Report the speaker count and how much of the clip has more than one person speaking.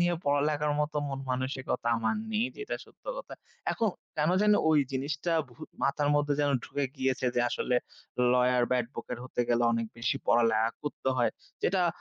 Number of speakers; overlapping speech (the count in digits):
1, no overlap